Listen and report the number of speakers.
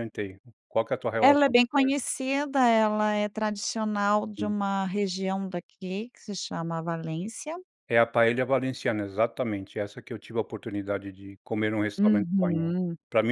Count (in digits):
2